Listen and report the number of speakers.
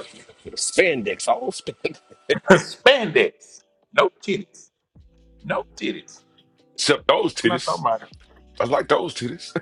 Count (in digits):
3